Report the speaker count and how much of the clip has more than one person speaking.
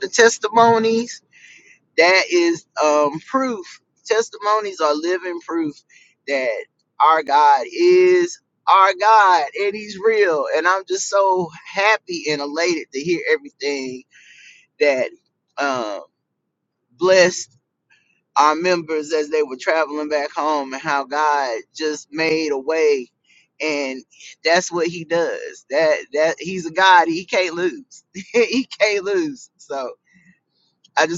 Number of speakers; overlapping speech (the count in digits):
1, no overlap